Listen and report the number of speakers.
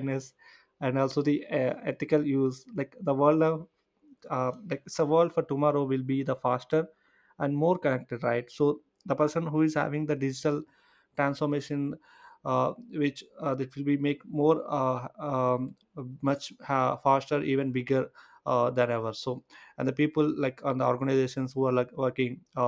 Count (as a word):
one